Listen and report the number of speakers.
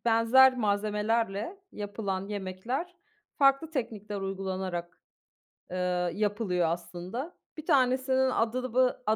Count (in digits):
1